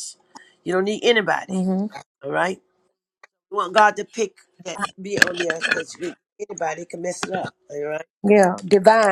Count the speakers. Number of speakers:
two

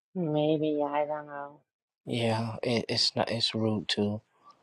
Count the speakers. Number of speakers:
two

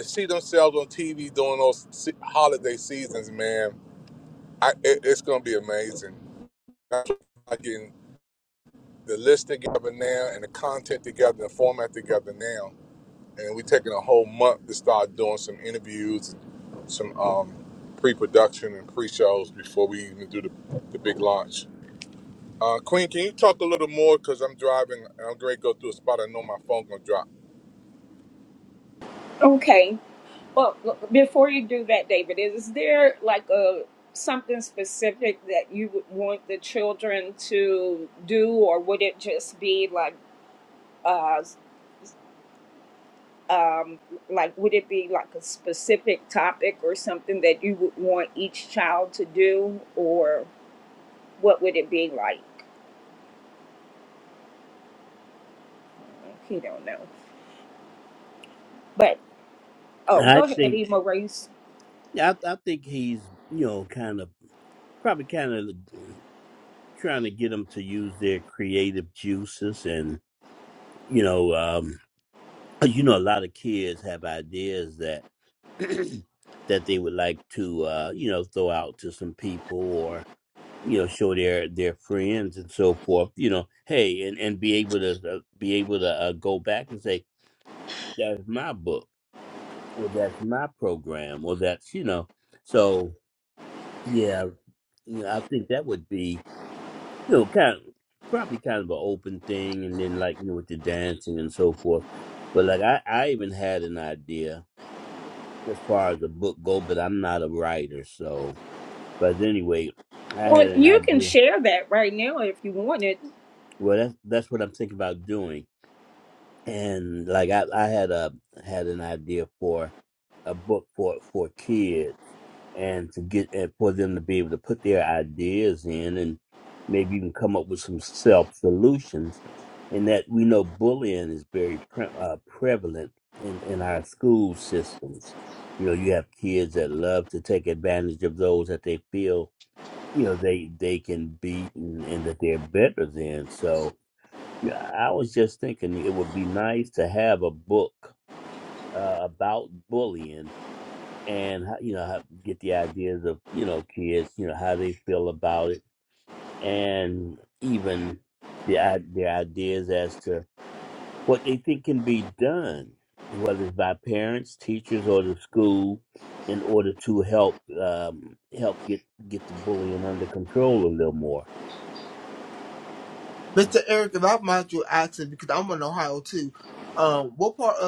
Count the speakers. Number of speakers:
four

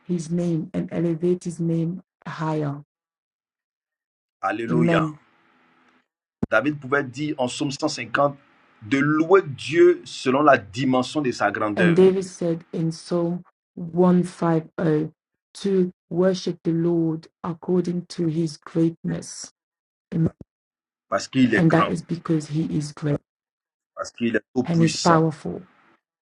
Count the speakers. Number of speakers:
two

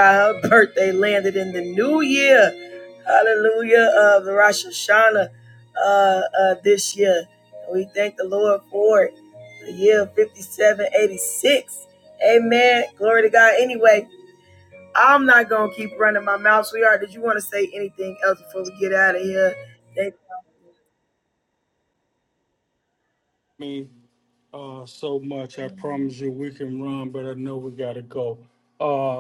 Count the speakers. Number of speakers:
two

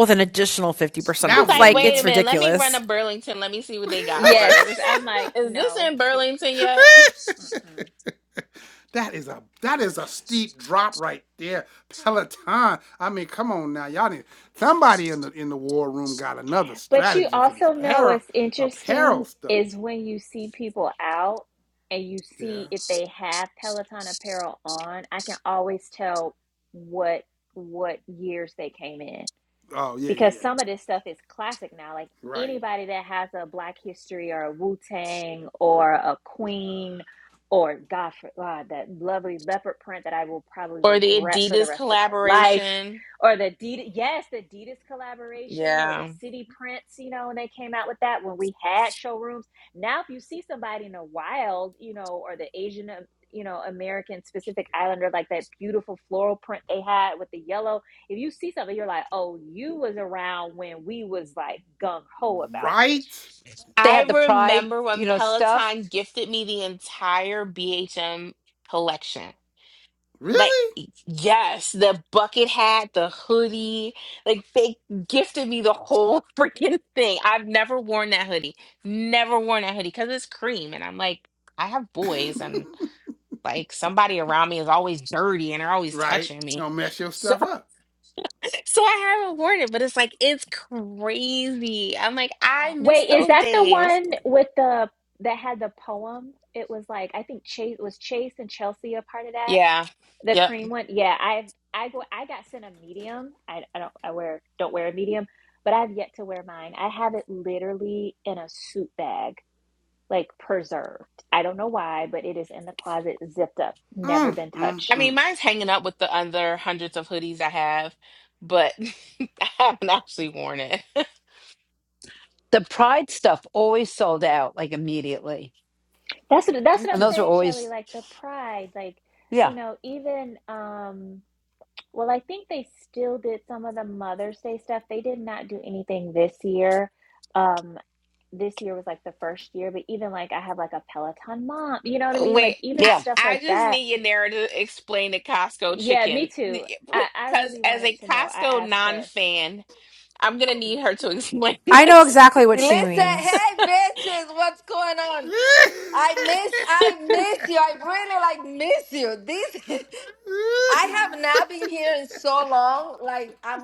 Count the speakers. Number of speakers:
six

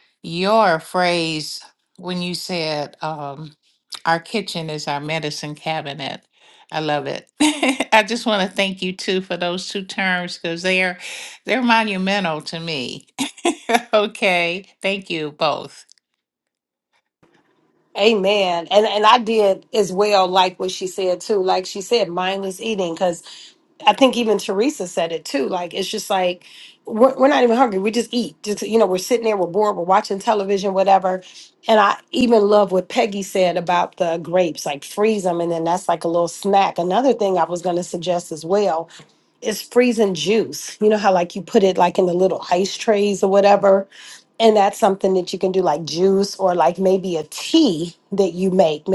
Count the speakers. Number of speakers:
two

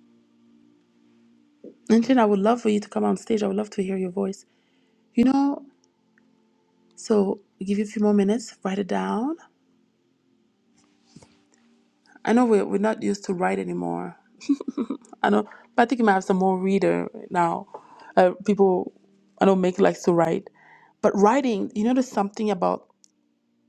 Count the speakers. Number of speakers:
one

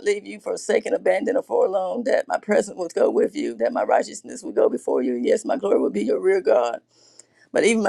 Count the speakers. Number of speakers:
one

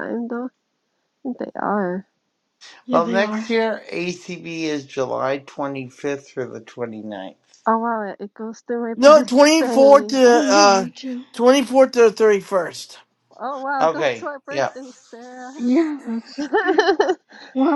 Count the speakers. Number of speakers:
four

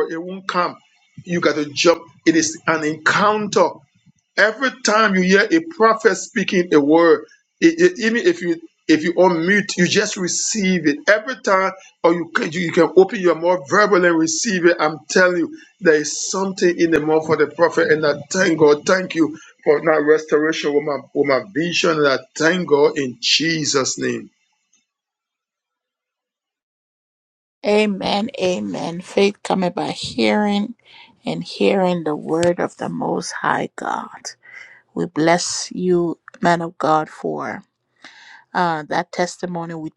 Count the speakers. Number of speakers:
two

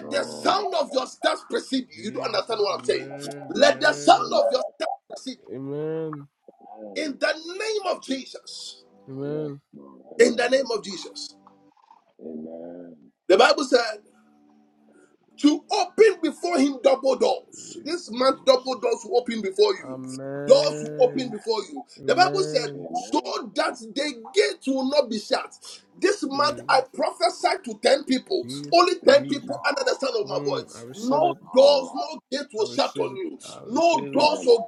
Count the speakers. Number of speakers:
three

